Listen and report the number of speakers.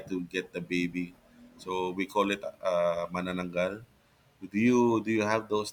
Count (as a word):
one